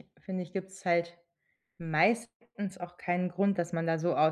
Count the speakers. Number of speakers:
1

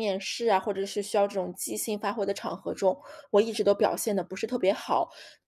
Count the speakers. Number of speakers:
1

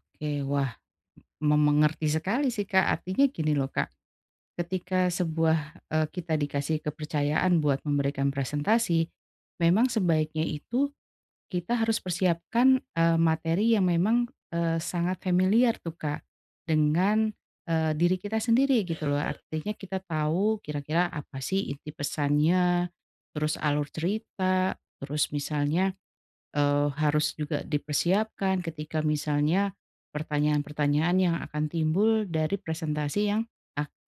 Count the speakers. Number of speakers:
1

